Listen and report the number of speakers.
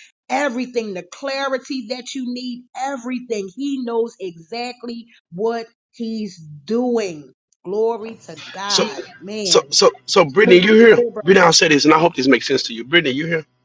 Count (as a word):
two